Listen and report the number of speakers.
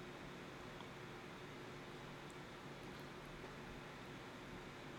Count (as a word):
zero